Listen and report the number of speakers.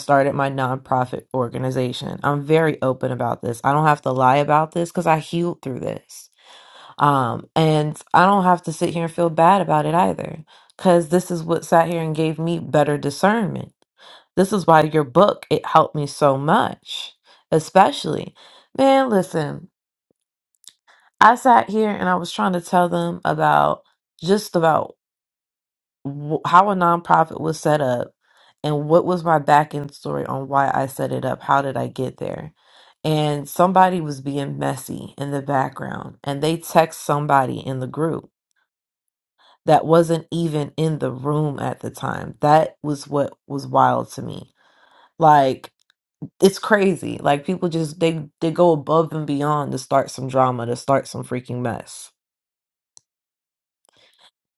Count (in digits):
1